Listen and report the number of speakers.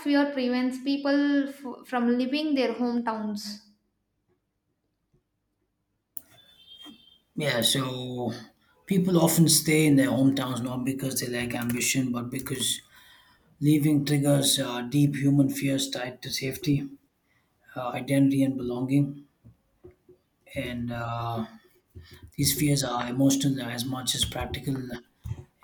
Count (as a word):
two